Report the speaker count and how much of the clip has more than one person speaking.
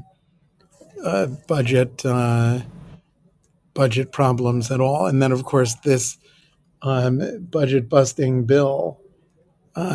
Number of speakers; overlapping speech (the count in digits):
1, no overlap